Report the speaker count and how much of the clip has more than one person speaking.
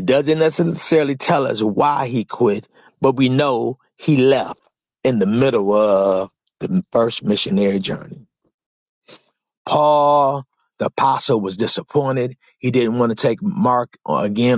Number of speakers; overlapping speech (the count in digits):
1, no overlap